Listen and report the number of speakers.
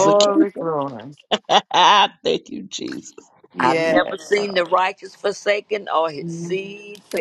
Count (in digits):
3